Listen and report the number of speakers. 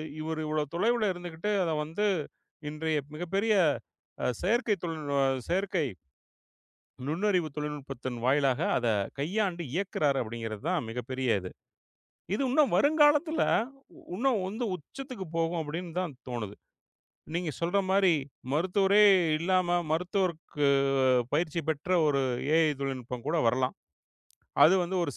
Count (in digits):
1